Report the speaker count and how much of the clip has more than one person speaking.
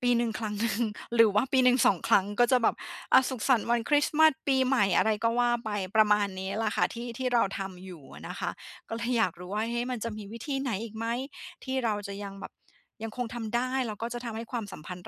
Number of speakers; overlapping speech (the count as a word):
one, no overlap